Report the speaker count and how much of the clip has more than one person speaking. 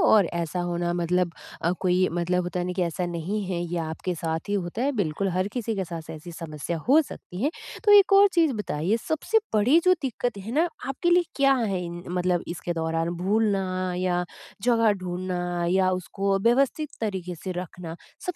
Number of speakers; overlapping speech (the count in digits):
1, no overlap